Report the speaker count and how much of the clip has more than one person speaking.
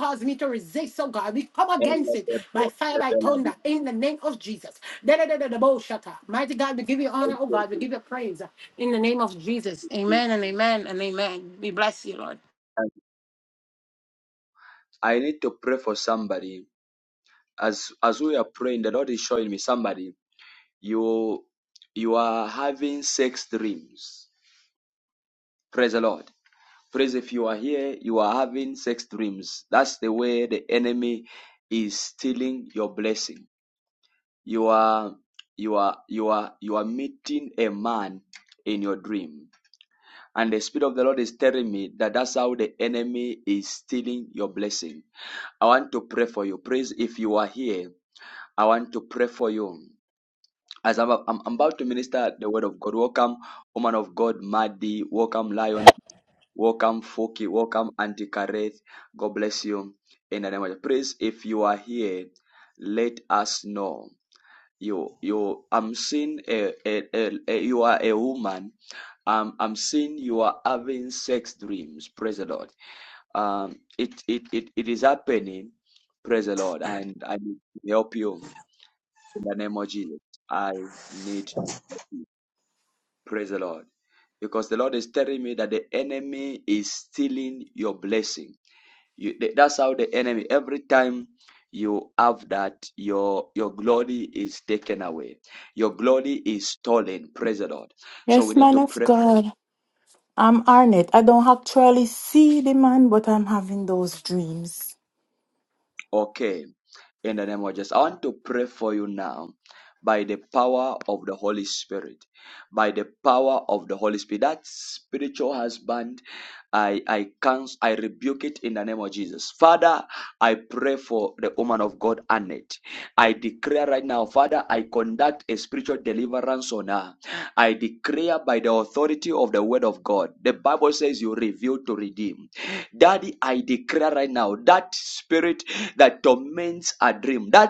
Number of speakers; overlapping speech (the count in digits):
3, about 1%